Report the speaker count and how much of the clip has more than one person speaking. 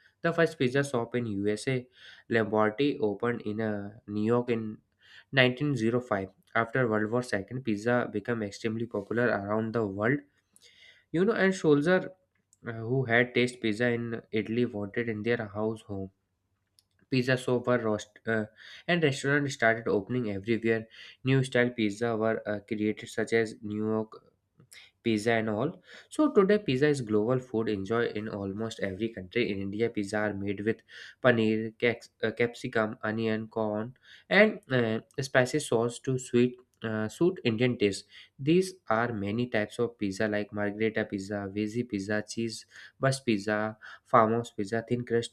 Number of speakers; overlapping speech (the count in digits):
1, no overlap